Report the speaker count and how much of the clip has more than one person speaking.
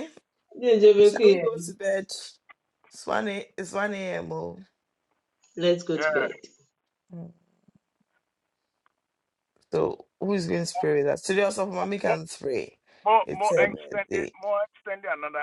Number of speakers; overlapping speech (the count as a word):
three, about 13%